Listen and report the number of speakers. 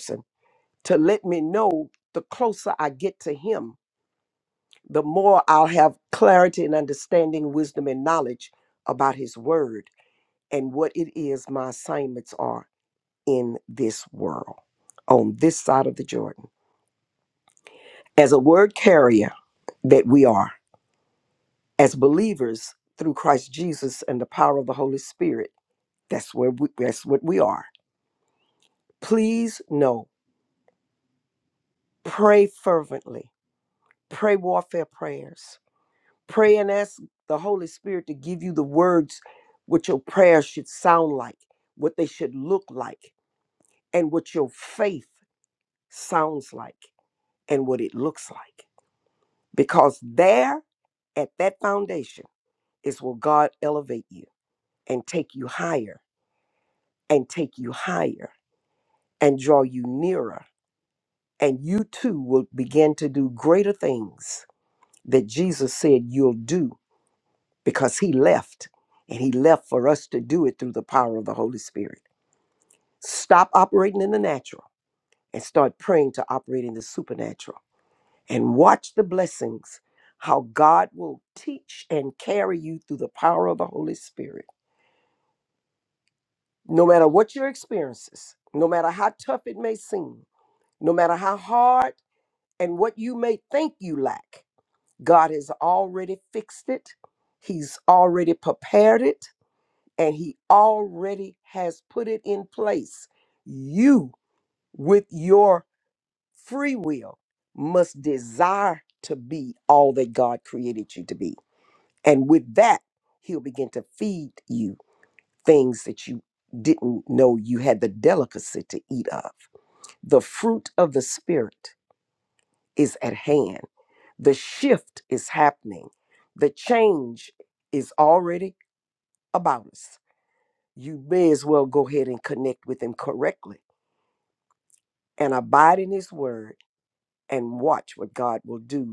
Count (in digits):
1